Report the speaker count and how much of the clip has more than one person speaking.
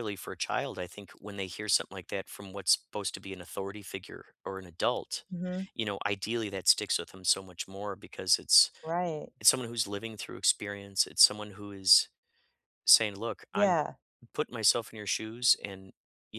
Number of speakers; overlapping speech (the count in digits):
2, about 1%